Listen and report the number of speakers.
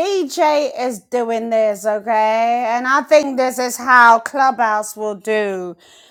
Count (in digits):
1